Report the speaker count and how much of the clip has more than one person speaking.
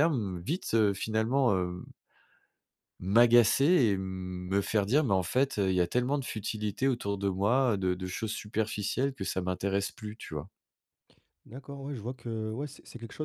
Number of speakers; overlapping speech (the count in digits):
2, no overlap